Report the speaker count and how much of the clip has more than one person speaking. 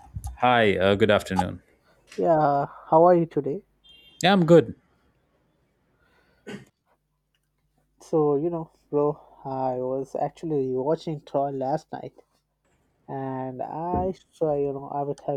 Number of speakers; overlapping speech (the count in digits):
2, no overlap